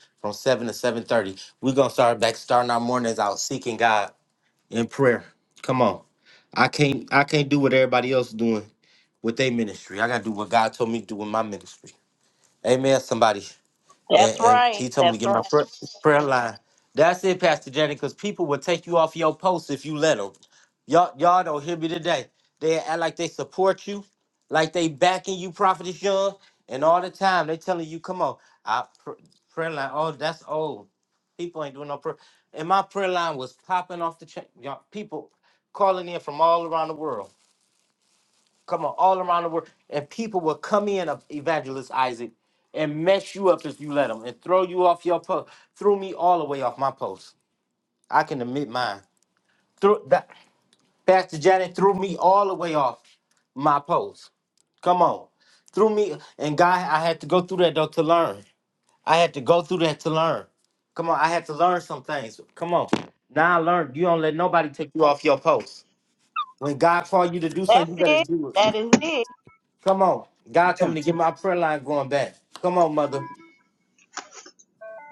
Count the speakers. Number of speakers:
two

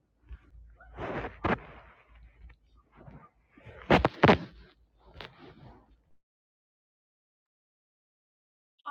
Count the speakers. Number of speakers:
zero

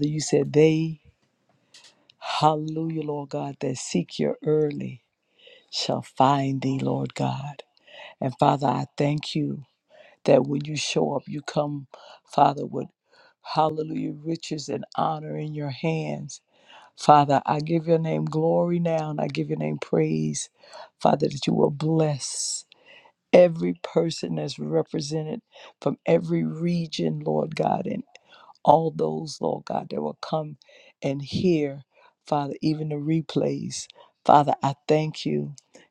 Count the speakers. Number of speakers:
one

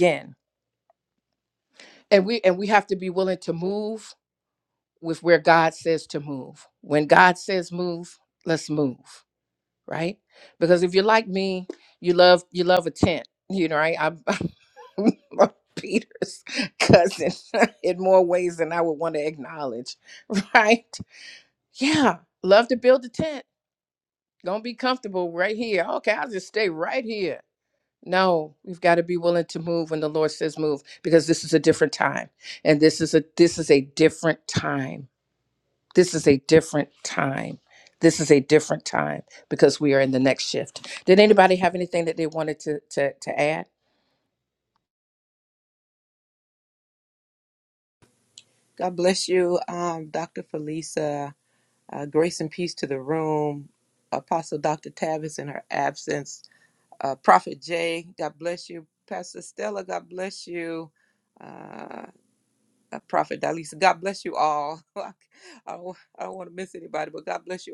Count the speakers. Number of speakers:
two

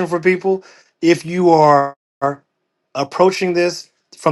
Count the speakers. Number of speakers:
one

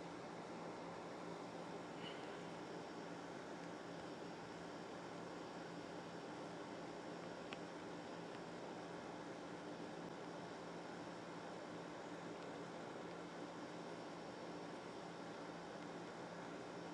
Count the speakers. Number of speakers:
zero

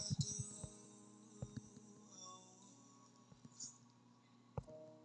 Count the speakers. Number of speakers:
zero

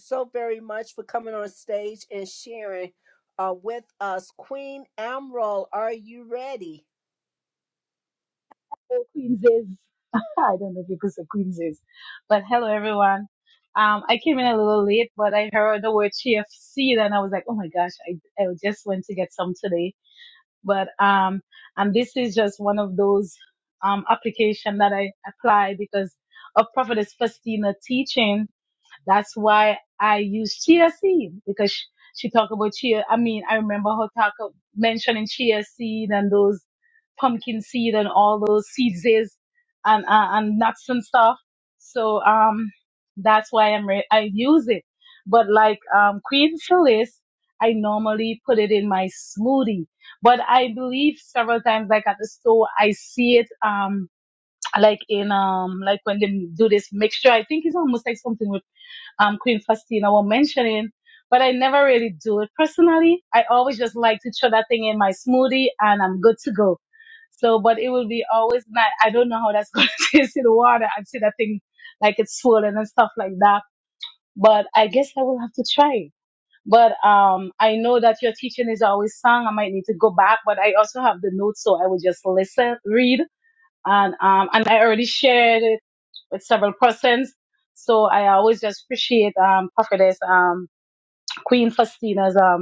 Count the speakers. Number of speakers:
two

